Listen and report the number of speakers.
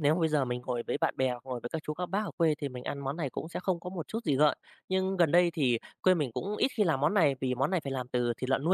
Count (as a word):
one